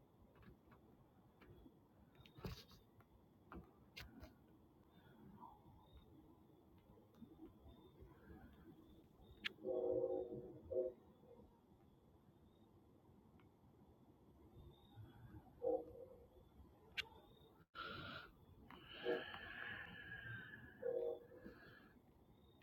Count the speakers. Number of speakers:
zero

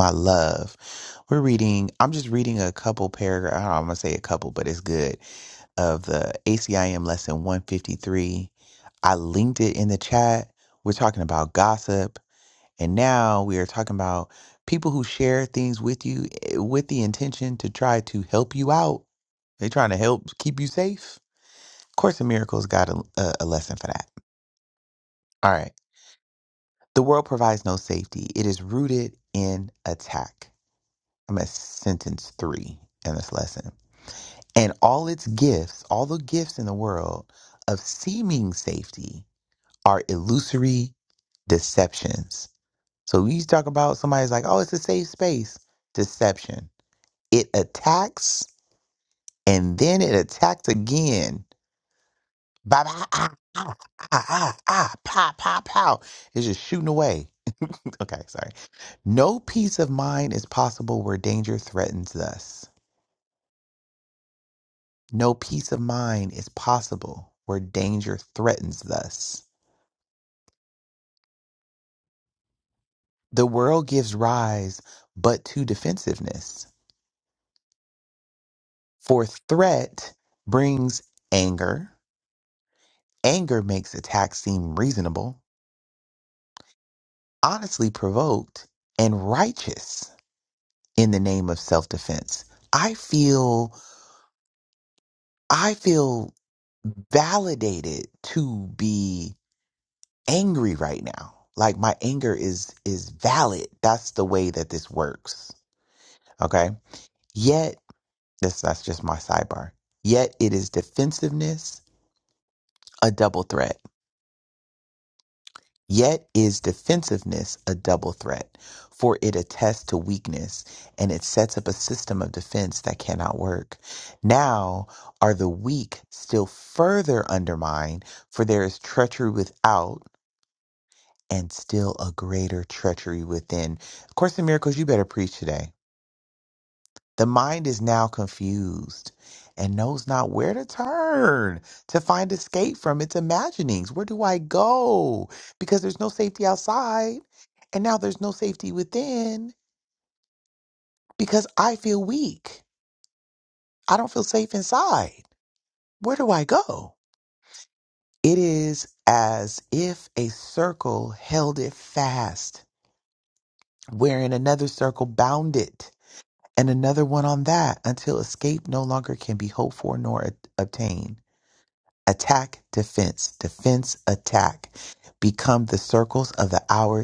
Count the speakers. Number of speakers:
one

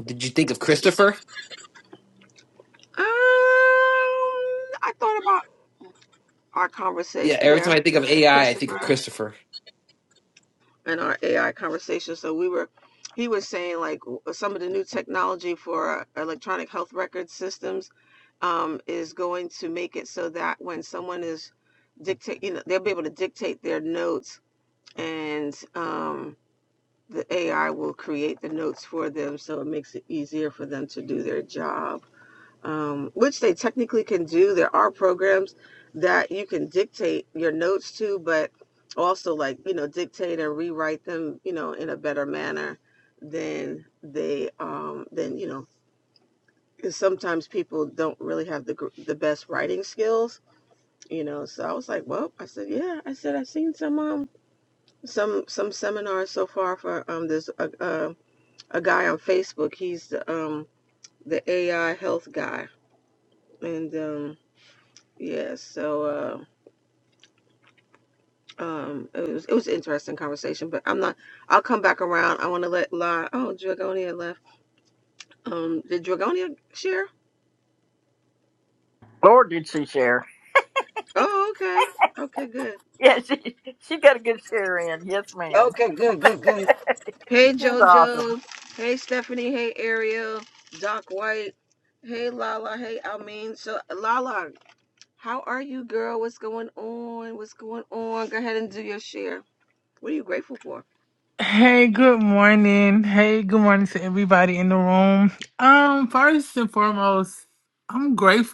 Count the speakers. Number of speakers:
four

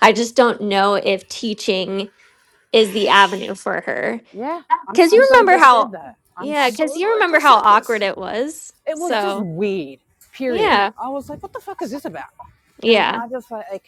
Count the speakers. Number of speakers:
two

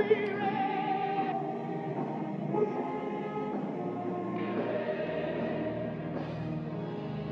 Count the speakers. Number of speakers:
zero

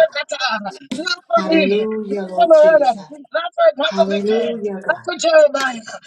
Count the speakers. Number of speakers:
two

